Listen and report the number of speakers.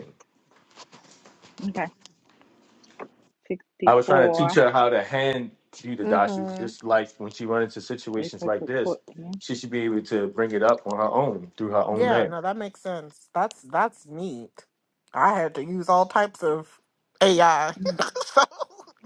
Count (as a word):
three